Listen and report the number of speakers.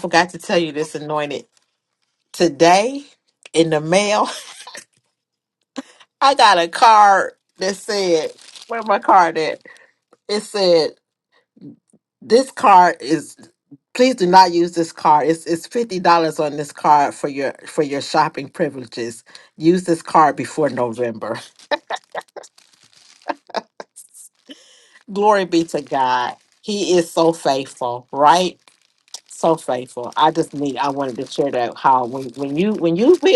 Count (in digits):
1